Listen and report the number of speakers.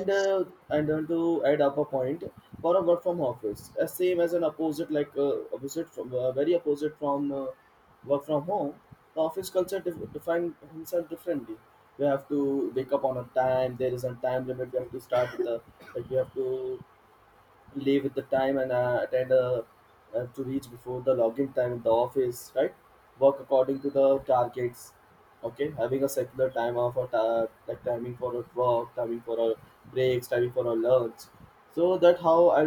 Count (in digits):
1